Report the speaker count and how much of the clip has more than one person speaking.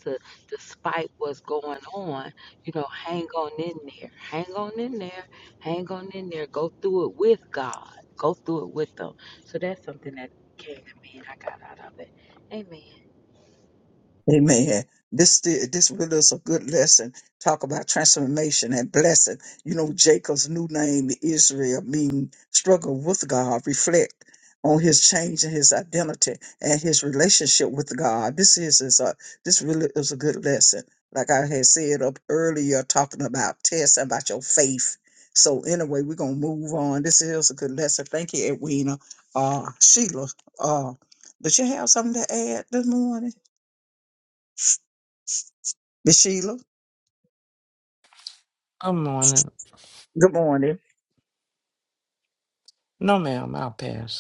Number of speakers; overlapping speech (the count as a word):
three, no overlap